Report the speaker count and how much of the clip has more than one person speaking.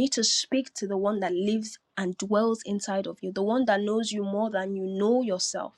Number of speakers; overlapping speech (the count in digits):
1, no overlap